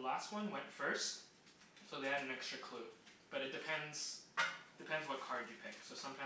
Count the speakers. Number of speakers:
1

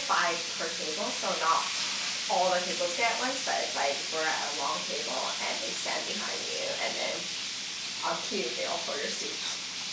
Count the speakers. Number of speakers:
1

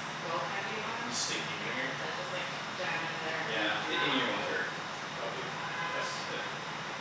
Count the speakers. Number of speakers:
1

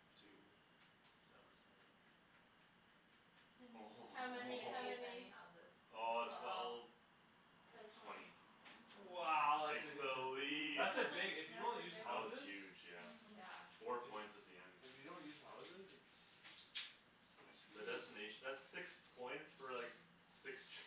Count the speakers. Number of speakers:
4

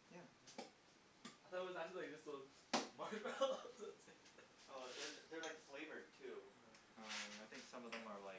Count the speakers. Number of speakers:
2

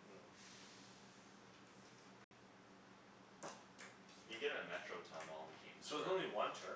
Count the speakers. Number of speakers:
2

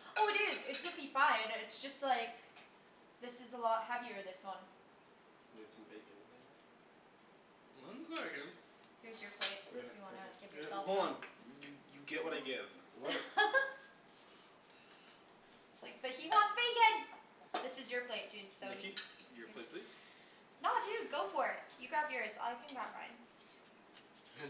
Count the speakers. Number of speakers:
3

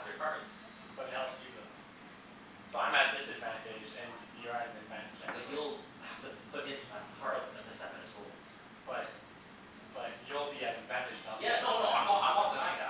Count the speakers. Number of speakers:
2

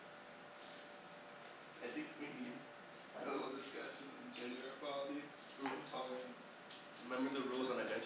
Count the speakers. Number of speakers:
2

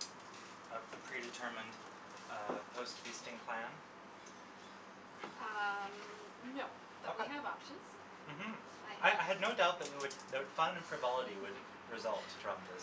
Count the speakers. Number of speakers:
2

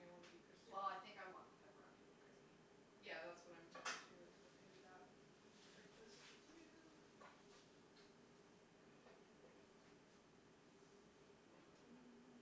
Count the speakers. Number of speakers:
2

